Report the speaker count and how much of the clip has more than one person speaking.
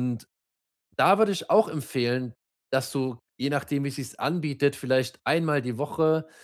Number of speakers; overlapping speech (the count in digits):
1, no overlap